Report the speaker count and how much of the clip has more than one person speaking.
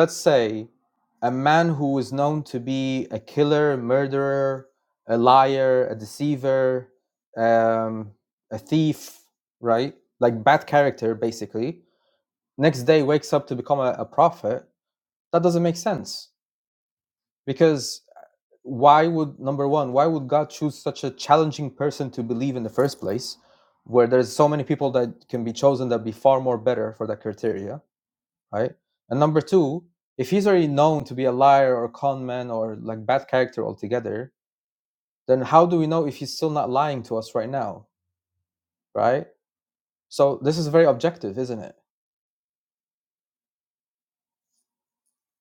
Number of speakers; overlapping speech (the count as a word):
one, no overlap